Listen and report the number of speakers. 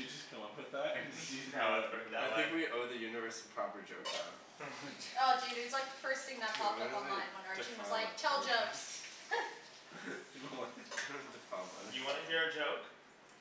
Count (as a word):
four